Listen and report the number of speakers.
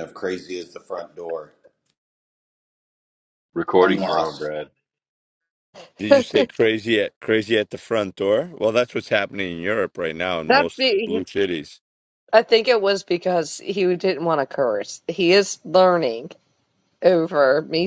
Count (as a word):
four